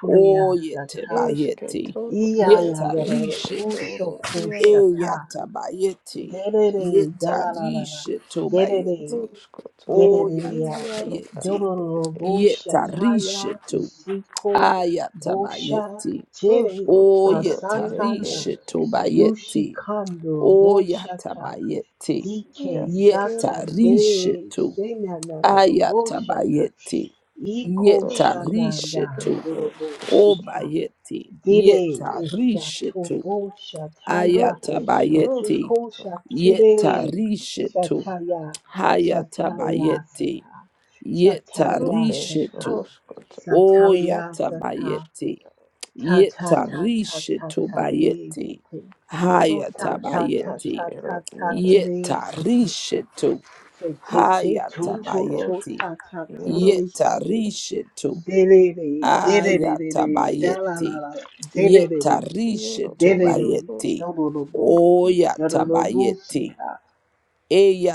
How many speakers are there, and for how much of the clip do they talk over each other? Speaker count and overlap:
3, about 58%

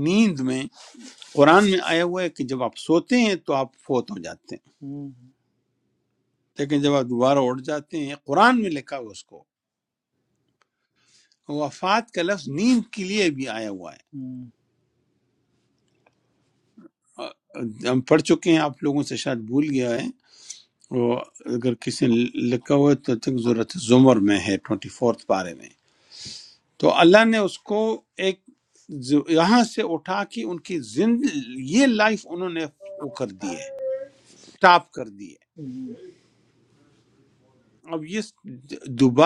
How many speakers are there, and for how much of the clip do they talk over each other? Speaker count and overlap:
2, no overlap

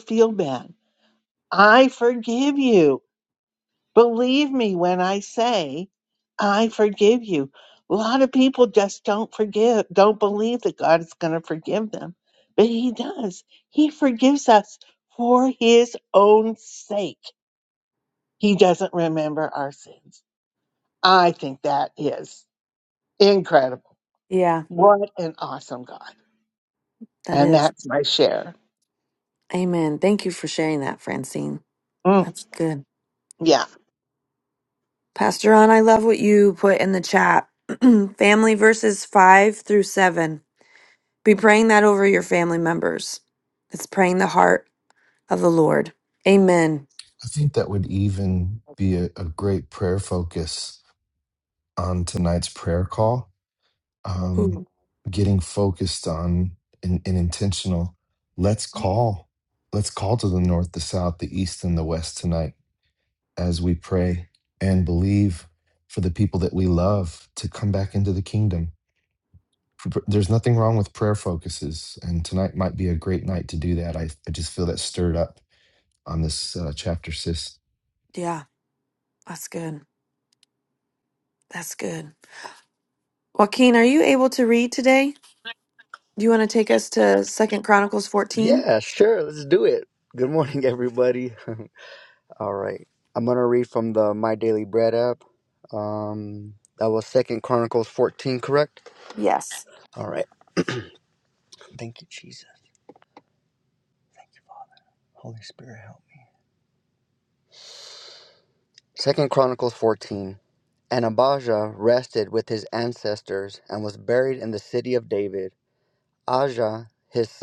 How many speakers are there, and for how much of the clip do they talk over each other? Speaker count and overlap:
4, about 1%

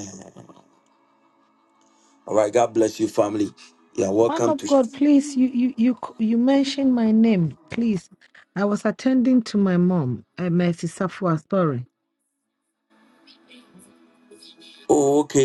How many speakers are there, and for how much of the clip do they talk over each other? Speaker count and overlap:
2, about 3%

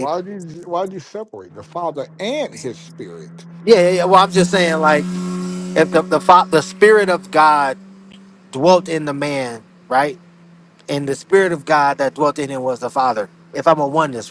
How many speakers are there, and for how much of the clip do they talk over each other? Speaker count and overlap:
2, about 1%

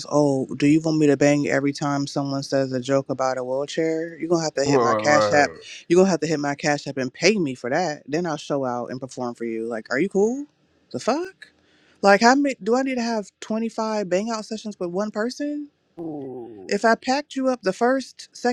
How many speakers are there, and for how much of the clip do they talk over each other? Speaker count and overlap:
2, about 5%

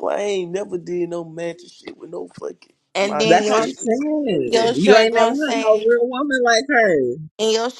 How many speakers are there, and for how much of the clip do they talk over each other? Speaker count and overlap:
3, about 37%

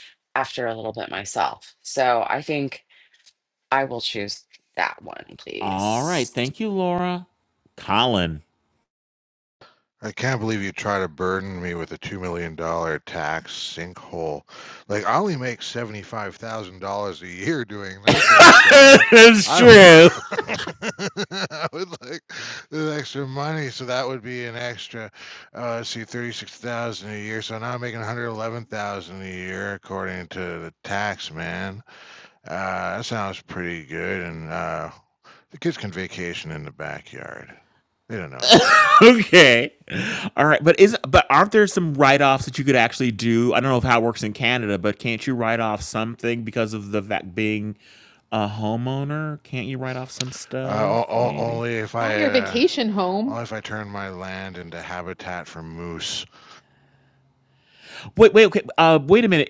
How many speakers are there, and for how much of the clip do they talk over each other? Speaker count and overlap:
4, about 5%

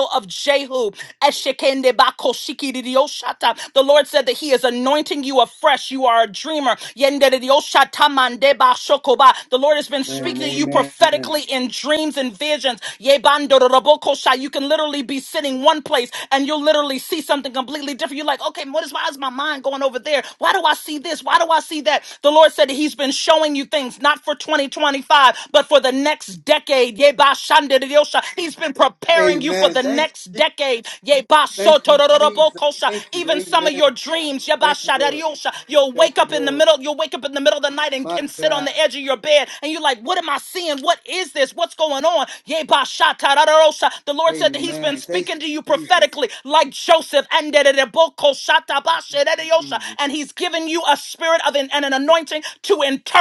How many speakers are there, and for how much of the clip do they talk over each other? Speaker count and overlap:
2, about 14%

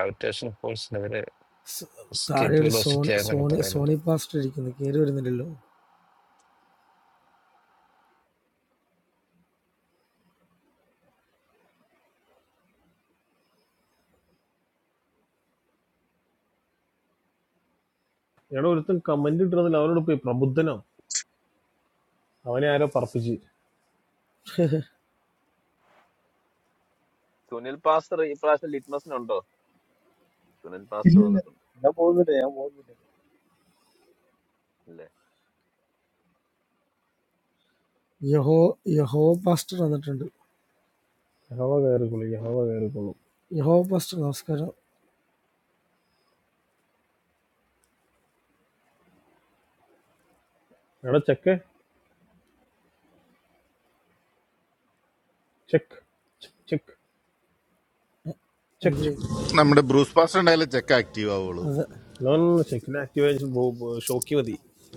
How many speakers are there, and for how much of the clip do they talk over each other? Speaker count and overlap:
6, about 4%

